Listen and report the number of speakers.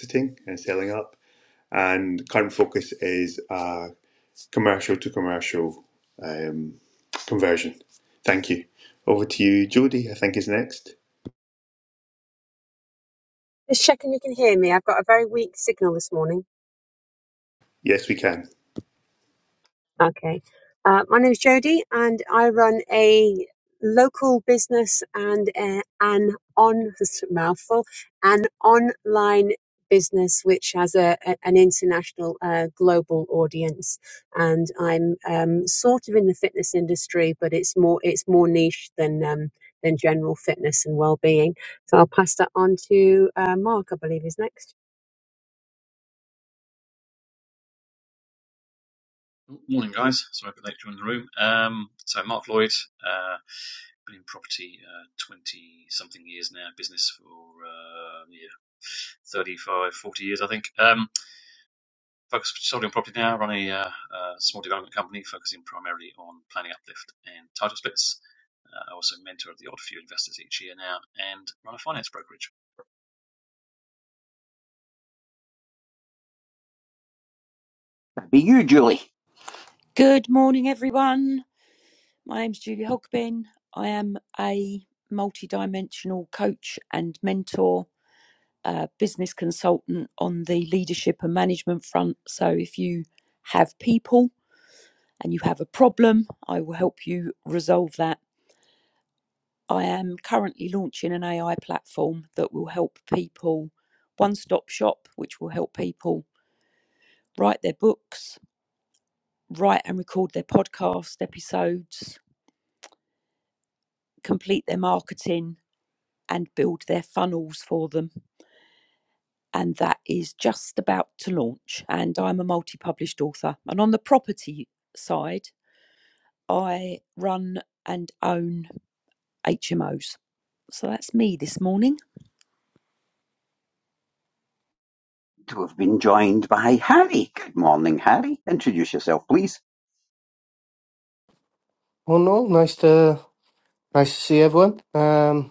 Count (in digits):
6